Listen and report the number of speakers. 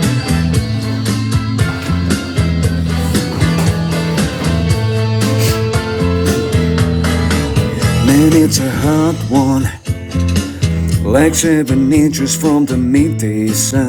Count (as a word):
one